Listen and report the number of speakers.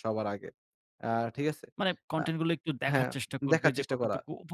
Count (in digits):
2